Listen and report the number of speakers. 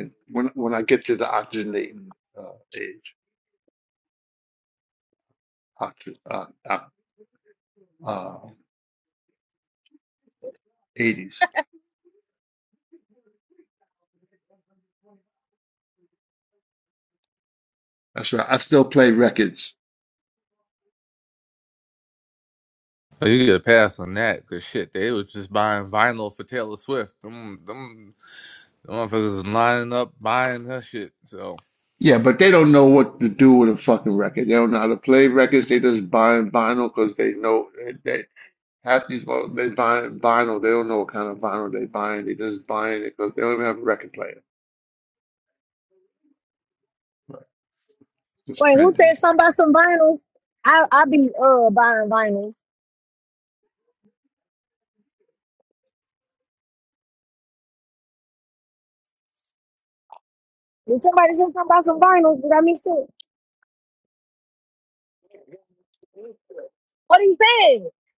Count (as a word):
three